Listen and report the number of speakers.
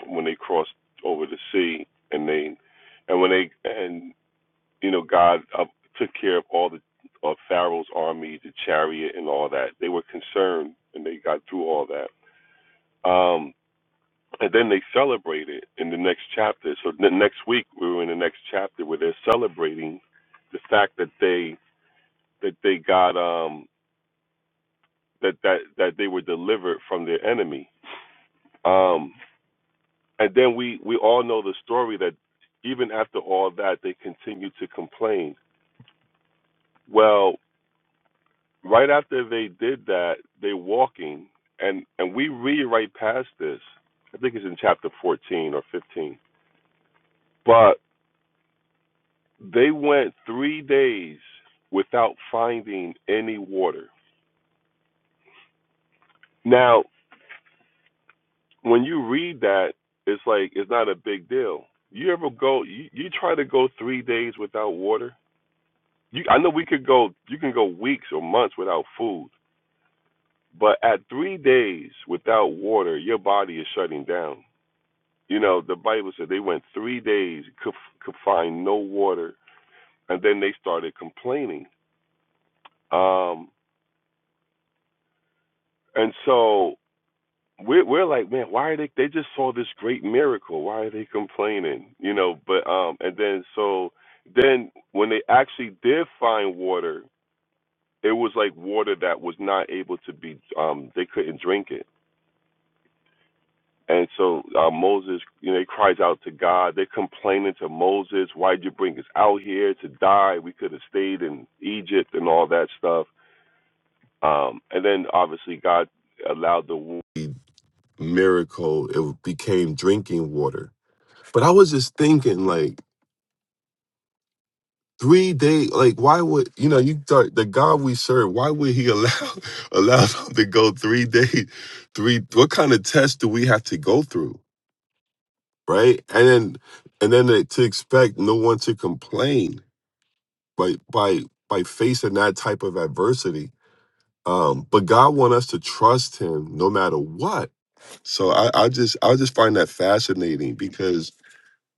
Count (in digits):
1